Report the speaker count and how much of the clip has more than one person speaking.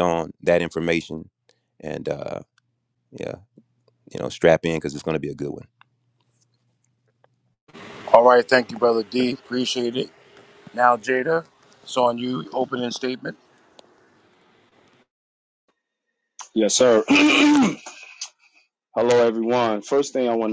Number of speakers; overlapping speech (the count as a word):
three, no overlap